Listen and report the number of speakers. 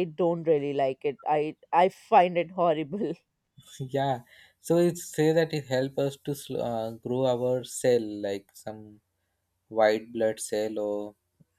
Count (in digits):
2